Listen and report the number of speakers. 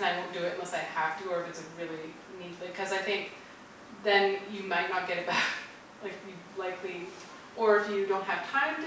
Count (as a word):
one